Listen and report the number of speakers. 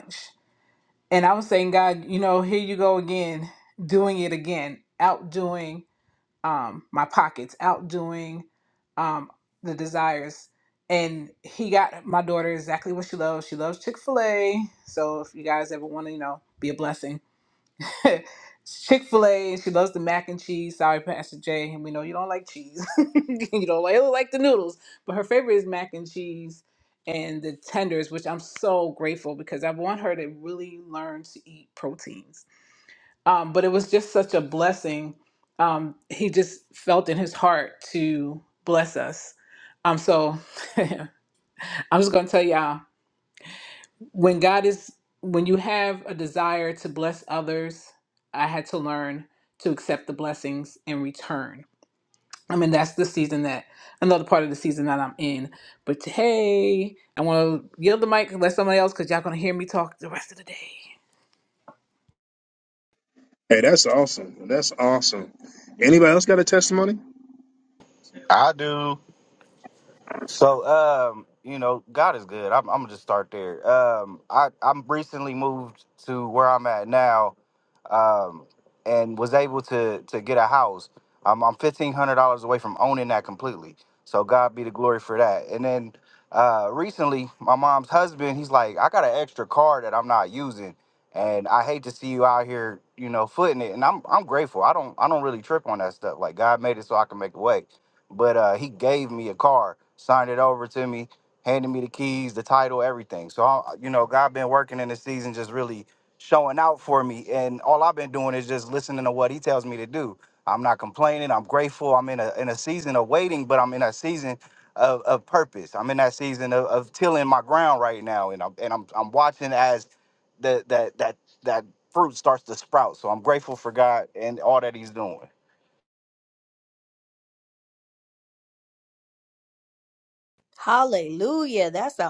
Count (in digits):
4